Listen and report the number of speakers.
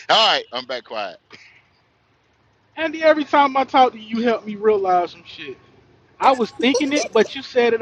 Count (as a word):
two